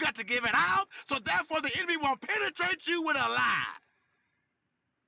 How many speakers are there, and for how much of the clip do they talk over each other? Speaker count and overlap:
1, no overlap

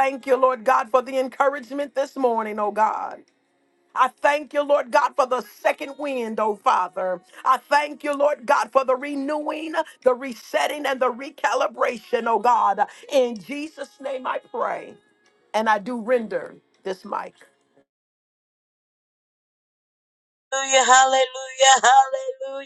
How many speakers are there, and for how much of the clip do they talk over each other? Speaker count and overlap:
2, no overlap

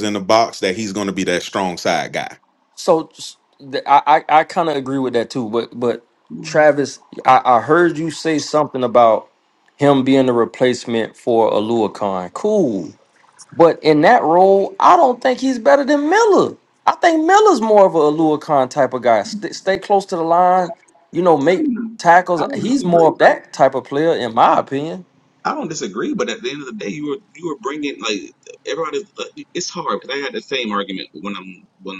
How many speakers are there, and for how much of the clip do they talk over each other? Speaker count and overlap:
3, about 3%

